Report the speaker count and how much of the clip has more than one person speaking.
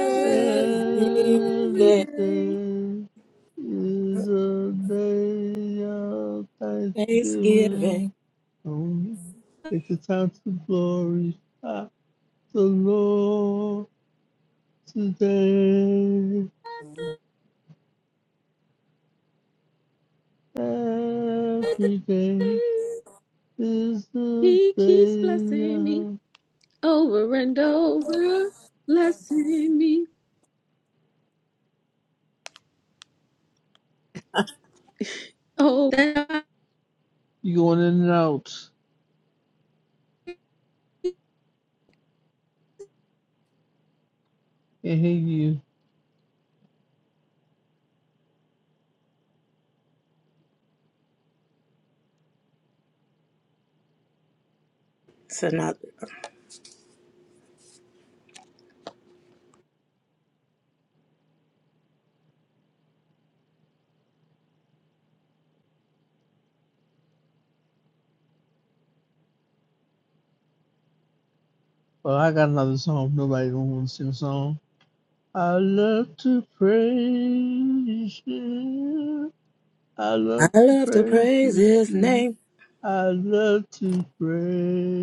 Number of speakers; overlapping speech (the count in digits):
3, about 6%